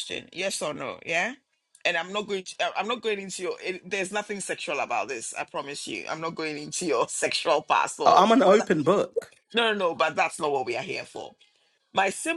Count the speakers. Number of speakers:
two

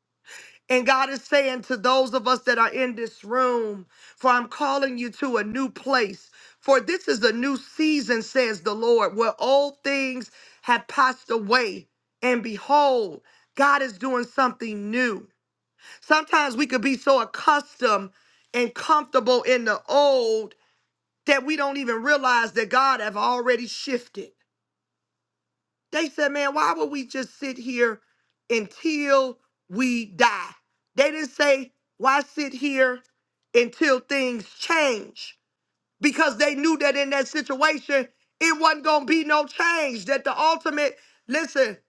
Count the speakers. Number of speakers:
one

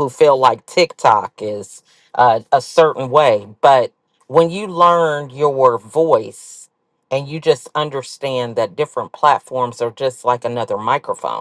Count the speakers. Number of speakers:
one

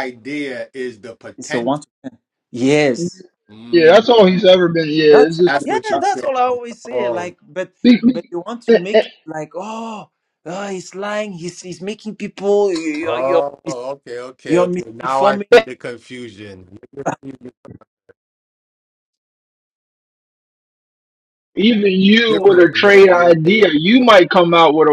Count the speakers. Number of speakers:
three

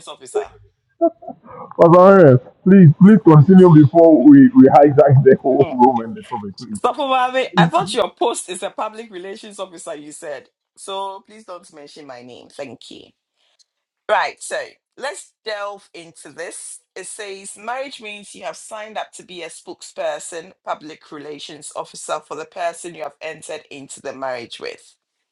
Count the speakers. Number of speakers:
two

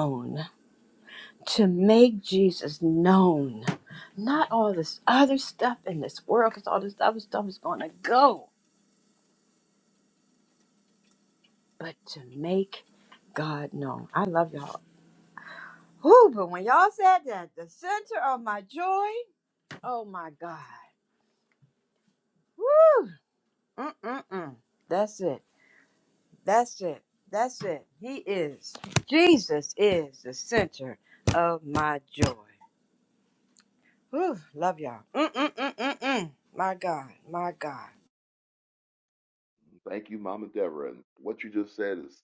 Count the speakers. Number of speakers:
two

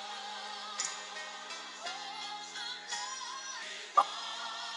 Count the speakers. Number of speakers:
zero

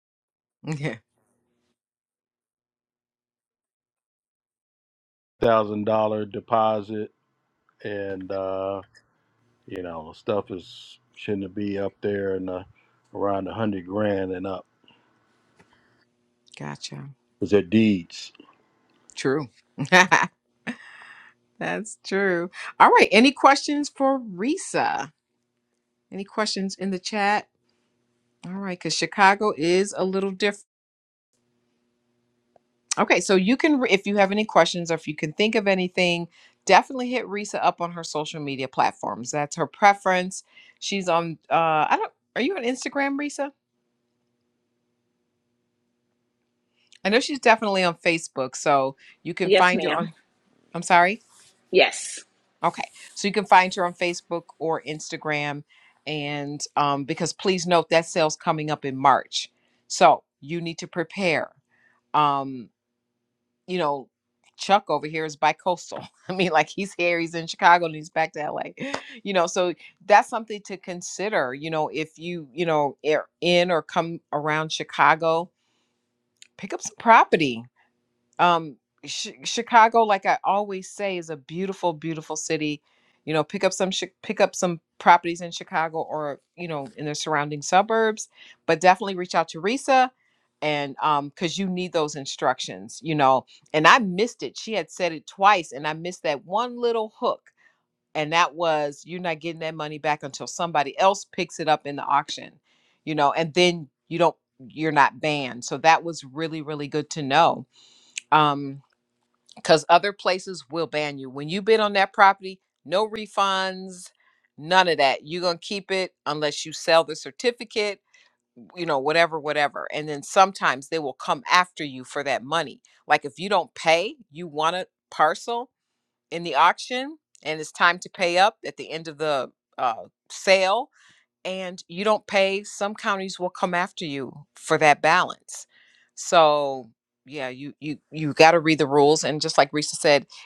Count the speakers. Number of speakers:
three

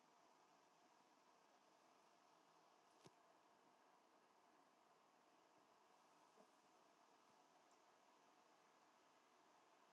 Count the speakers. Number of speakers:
zero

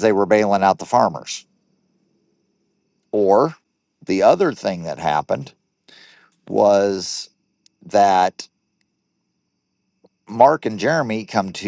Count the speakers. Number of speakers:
one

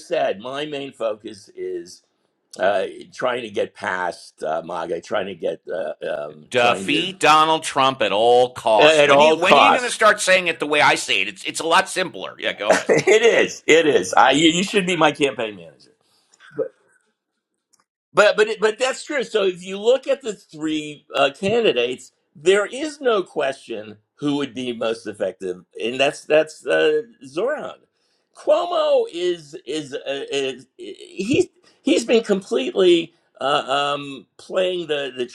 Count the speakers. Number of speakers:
two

